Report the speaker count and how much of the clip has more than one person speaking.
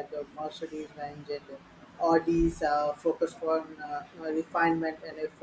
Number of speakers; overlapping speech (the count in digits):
1, no overlap